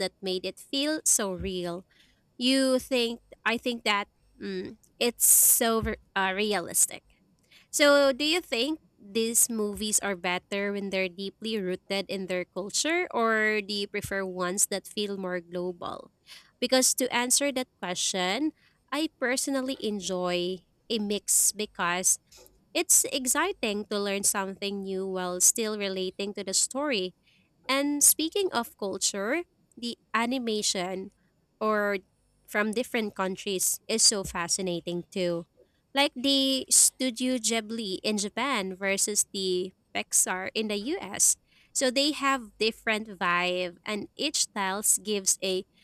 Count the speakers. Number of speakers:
one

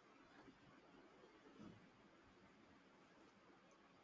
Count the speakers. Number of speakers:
zero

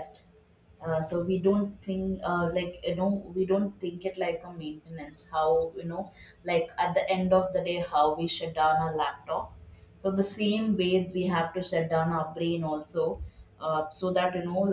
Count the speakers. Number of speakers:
one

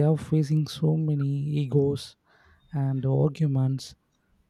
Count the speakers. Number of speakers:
one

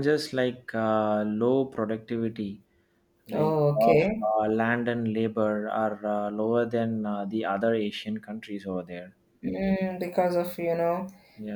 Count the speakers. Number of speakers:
two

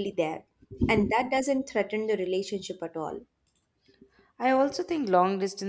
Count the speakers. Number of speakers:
two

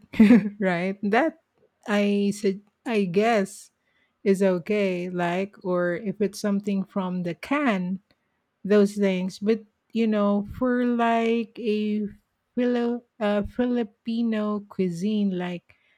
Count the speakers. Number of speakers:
one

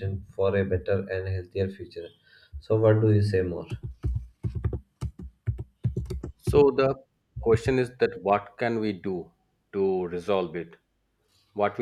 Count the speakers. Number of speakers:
two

